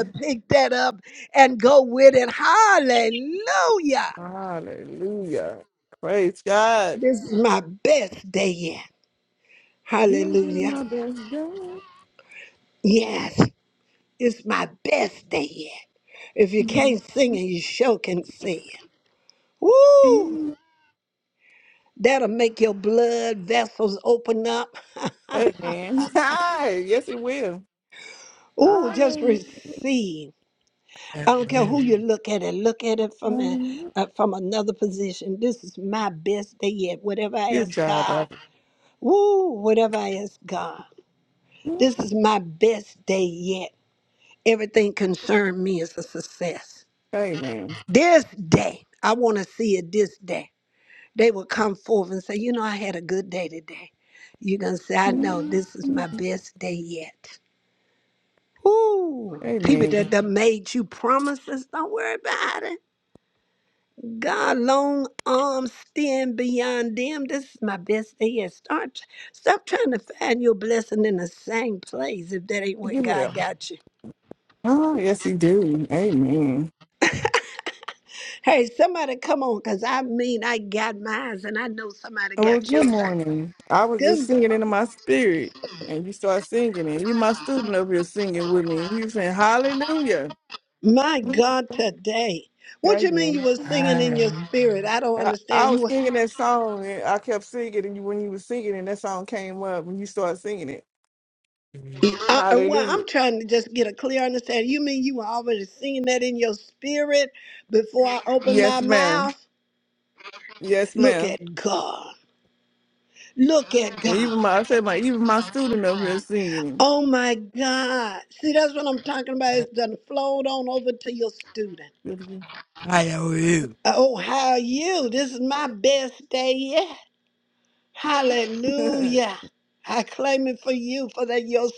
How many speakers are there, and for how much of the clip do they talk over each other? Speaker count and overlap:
2, about 8%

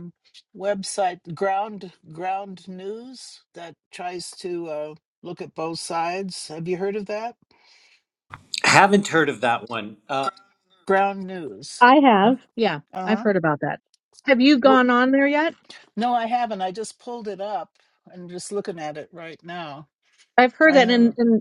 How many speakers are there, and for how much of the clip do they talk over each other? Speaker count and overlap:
3, about 5%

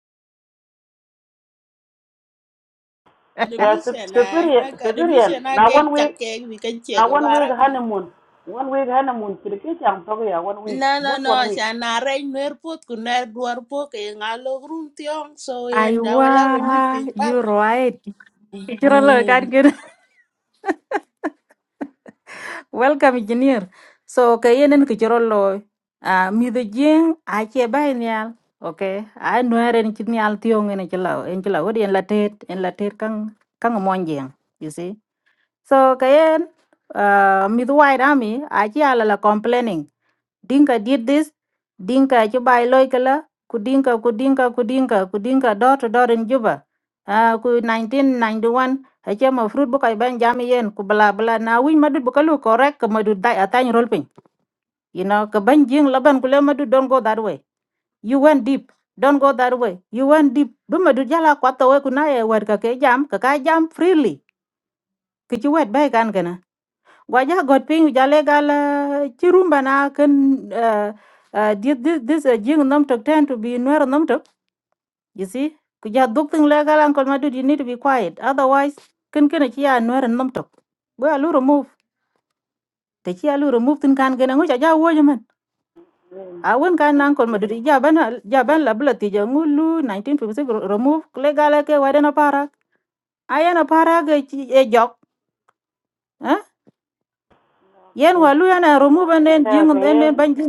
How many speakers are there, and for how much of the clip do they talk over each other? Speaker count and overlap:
3, about 7%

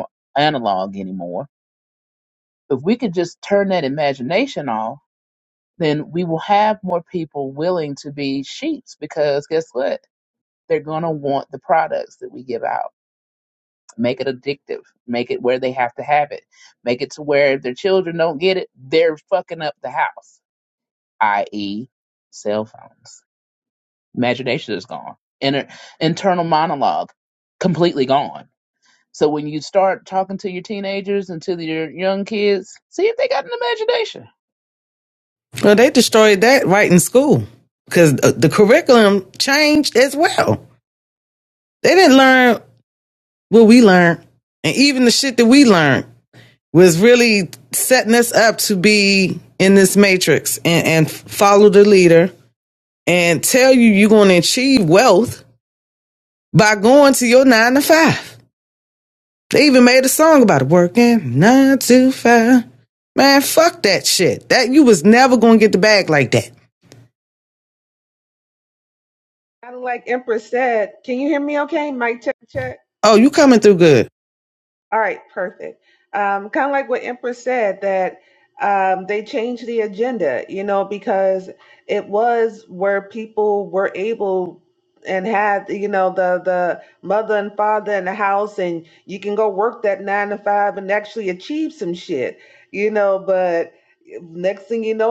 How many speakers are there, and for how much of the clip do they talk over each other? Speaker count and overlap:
3, no overlap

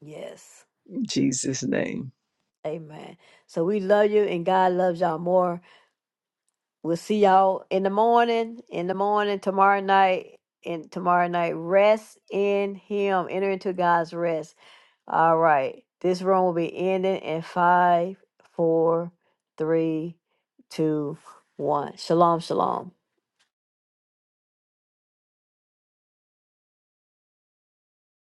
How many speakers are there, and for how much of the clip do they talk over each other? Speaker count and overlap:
2, no overlap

